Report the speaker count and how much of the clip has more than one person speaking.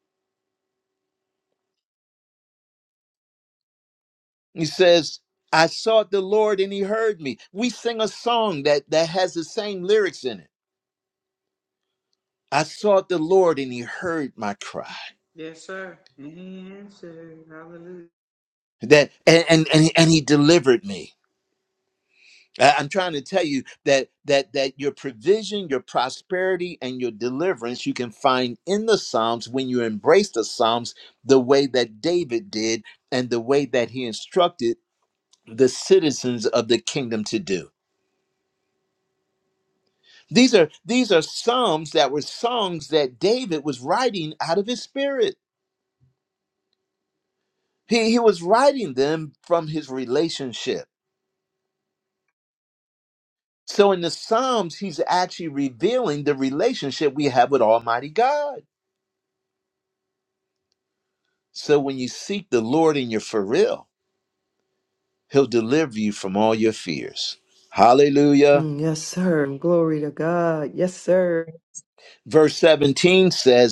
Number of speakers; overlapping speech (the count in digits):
3, under 1%